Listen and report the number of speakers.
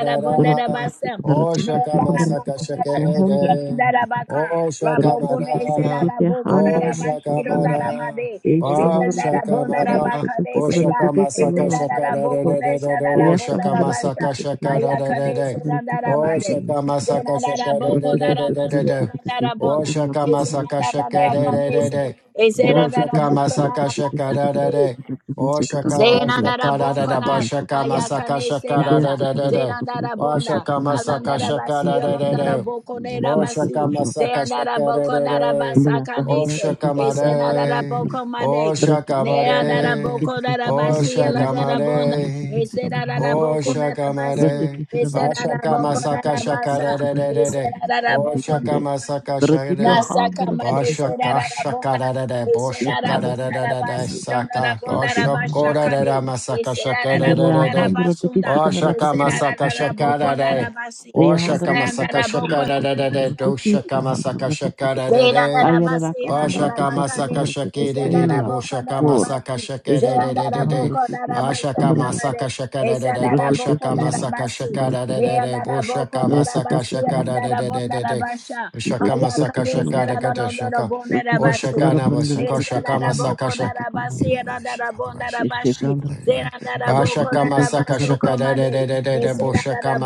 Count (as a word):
three